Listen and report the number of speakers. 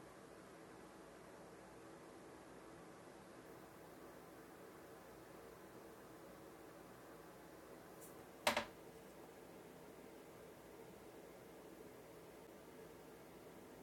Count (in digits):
0